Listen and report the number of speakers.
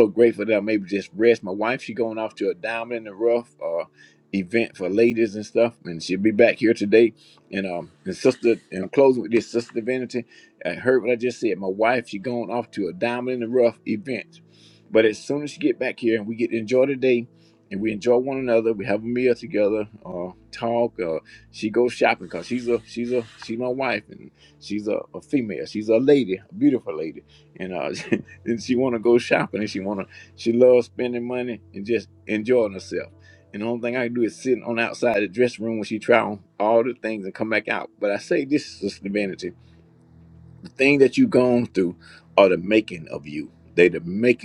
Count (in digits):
1